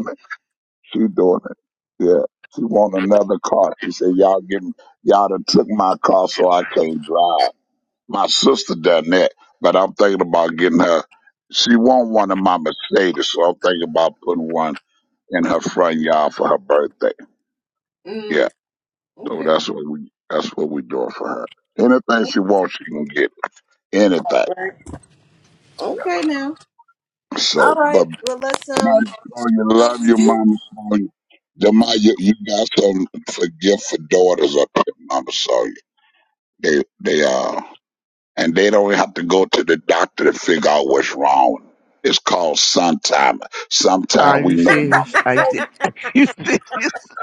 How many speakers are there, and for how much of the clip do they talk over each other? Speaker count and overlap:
3, about 7%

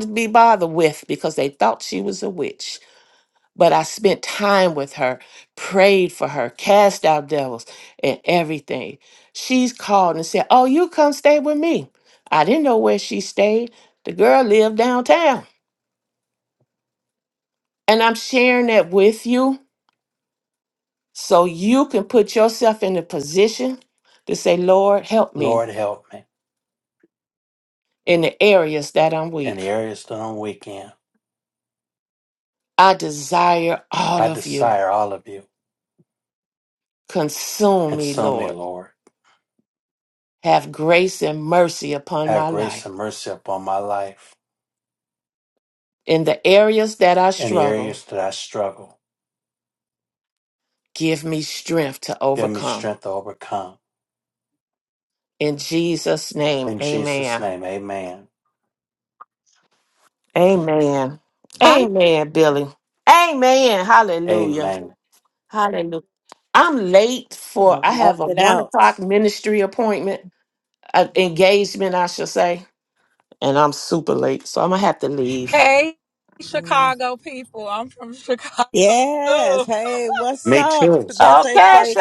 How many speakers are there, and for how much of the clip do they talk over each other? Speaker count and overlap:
4, about 10%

